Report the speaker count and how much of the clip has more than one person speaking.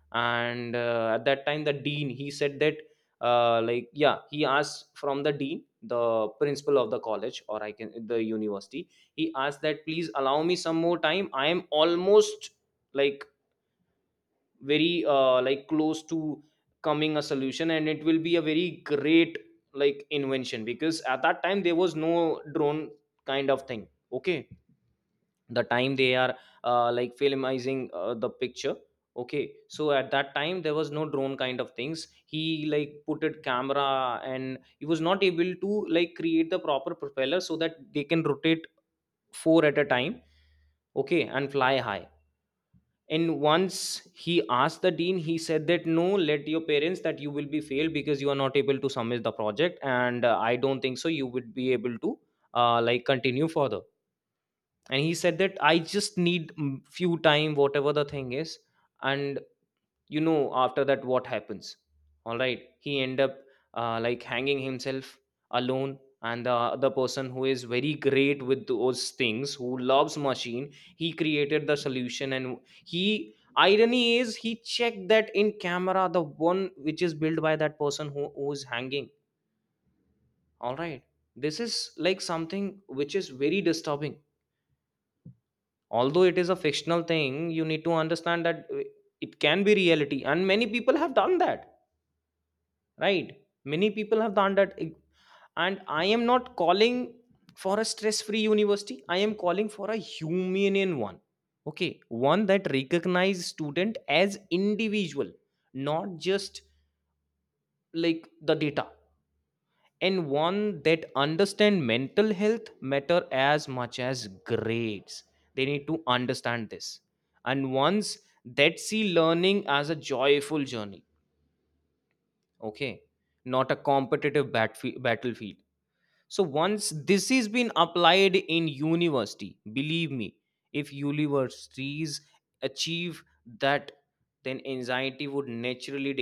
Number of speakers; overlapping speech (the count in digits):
1, no overlap